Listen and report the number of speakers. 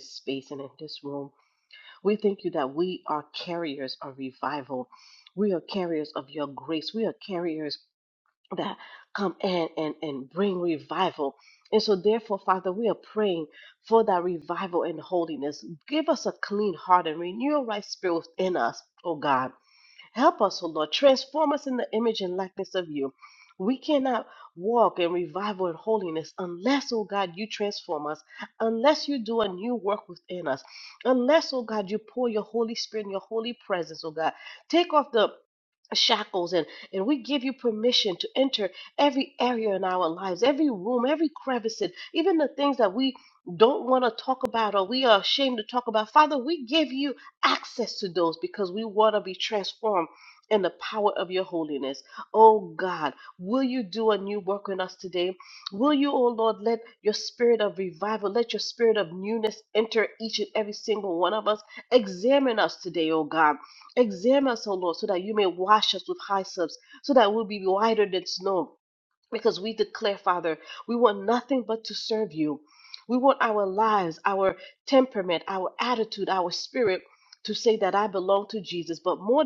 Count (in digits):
1